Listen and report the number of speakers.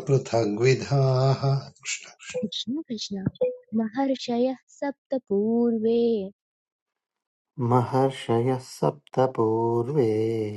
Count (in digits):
3